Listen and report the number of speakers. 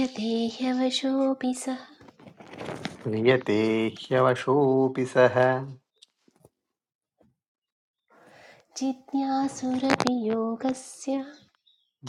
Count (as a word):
two